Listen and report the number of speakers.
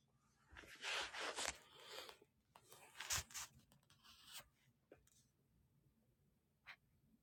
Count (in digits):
0